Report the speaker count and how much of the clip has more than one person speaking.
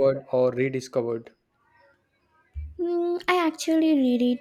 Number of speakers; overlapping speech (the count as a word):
two, no overlap